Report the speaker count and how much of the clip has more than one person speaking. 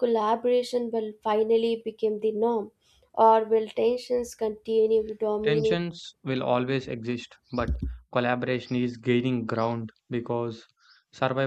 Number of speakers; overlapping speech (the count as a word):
two, about 3%